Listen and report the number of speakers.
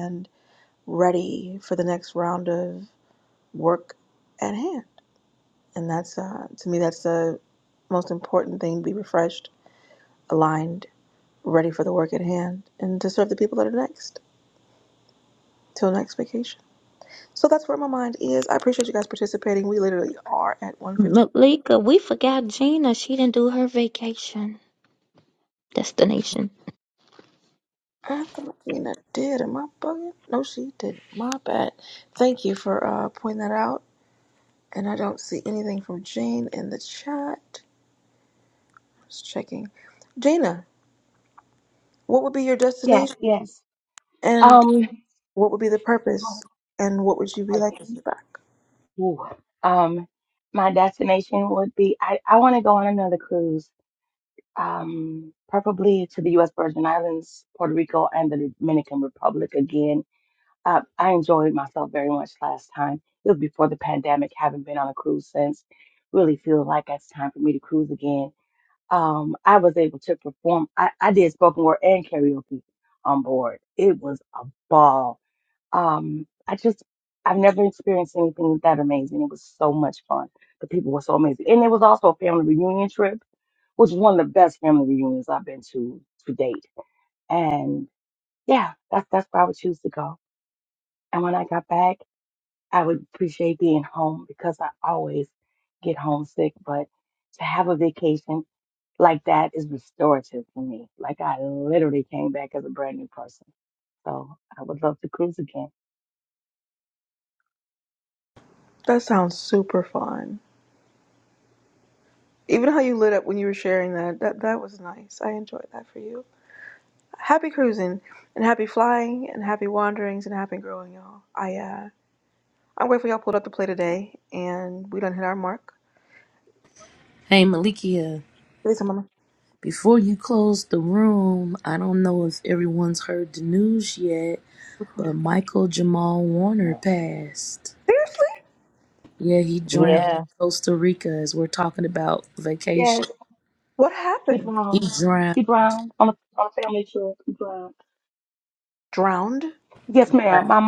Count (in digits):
4